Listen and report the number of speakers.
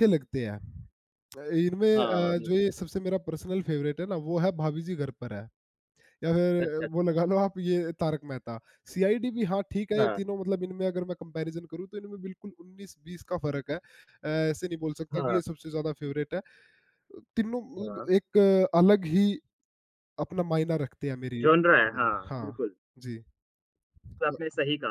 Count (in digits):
2